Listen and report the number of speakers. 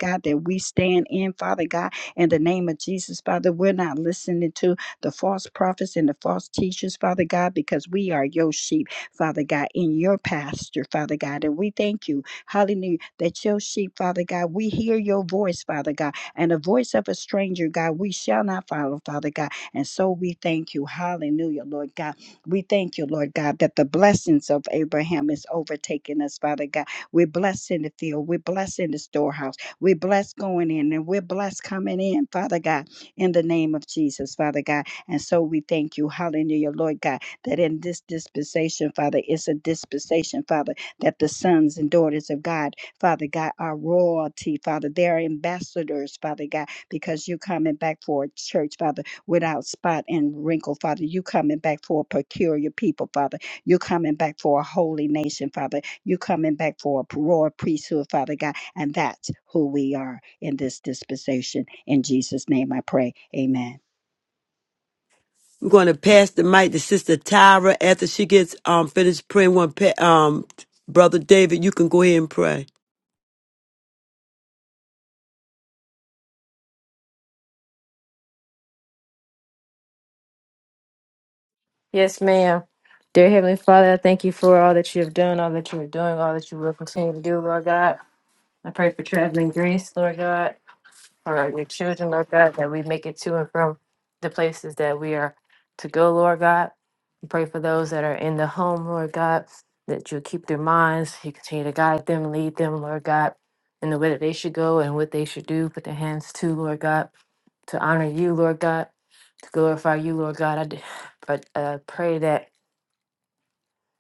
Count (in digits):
3